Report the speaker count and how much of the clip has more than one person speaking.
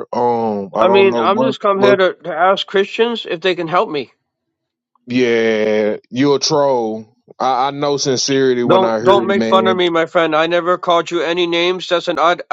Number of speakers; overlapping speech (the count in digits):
2, about 19%